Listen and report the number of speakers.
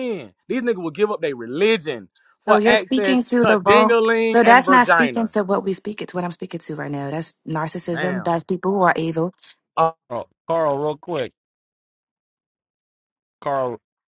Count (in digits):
3